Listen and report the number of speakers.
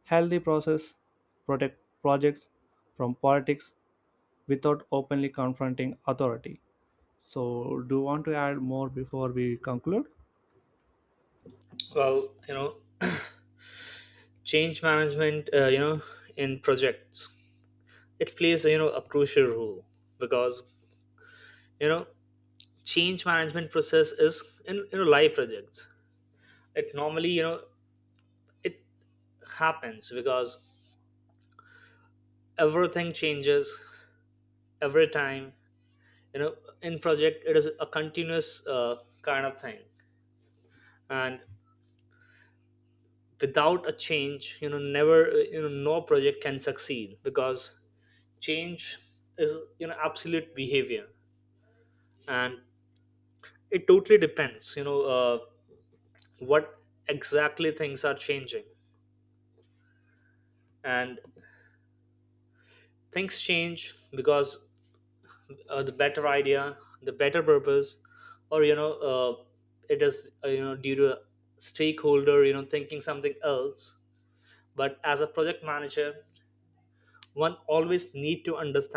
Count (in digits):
2